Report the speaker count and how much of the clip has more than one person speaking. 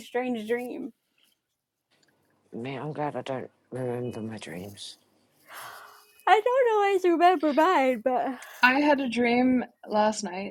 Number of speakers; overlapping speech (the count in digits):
3, no overlap